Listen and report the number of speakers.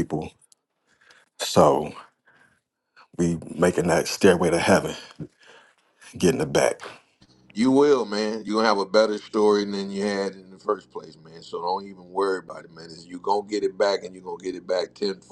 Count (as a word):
two